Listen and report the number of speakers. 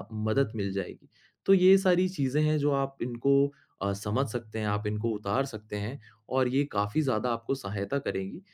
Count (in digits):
1